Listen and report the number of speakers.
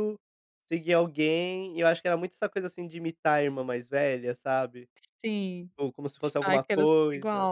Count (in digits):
2